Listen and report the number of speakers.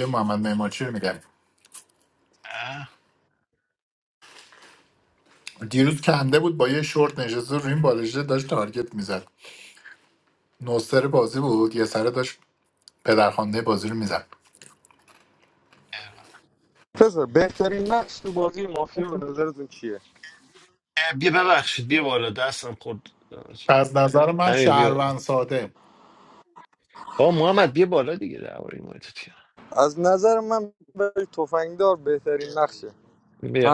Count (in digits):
3